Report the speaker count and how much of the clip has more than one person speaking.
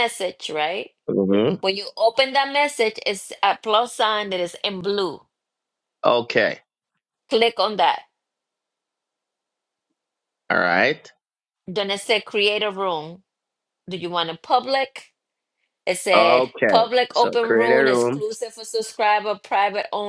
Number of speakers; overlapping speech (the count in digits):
2, about 8%